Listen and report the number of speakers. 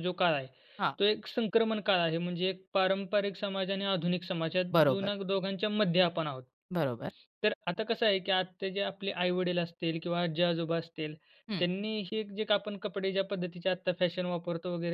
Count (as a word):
two